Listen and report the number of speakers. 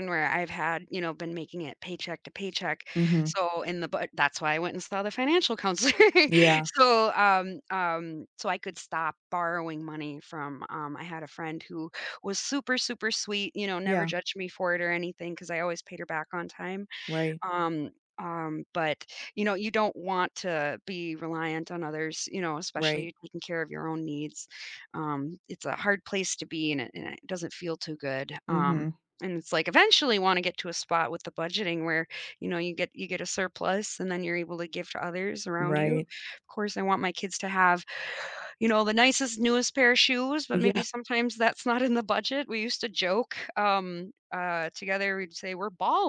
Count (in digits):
2